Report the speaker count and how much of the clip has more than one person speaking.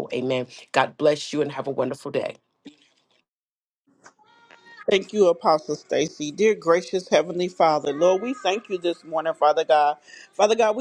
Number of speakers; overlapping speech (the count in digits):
2, no overlap